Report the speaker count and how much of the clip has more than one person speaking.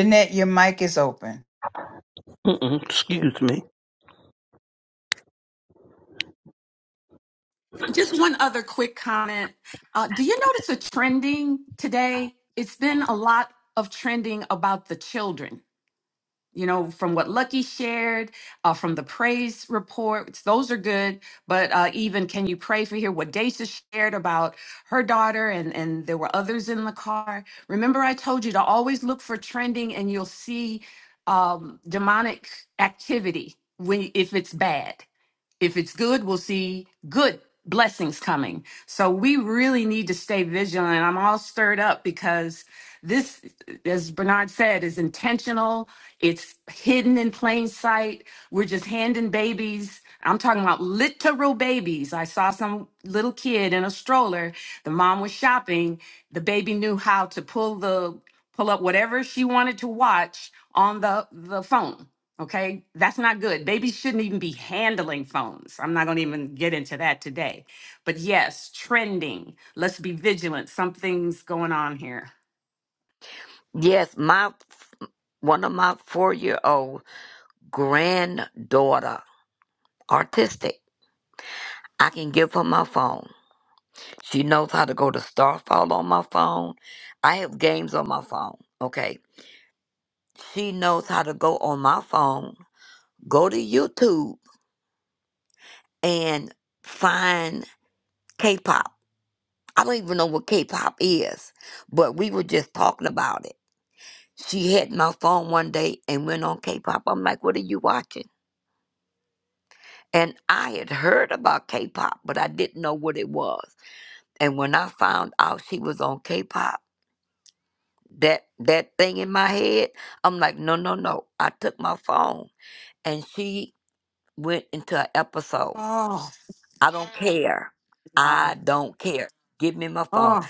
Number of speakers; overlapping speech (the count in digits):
4, under 1%